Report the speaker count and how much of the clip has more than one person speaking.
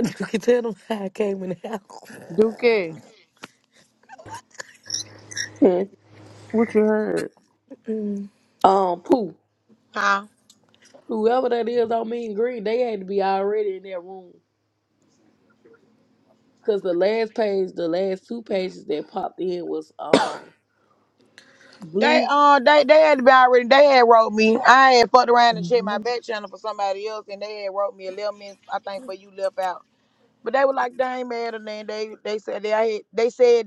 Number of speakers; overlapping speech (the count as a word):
four, about 1%